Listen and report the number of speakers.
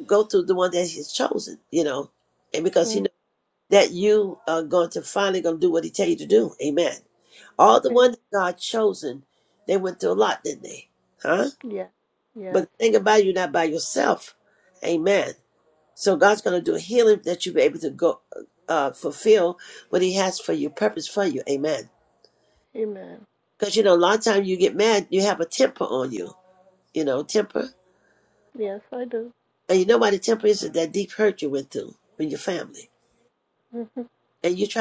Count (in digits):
2